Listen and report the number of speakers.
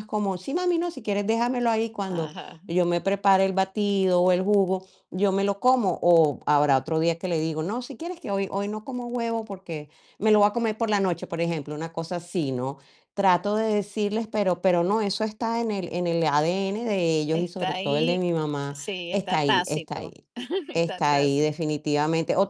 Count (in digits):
2